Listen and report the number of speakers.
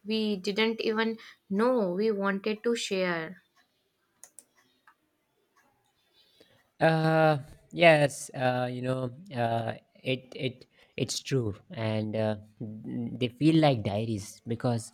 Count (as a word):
two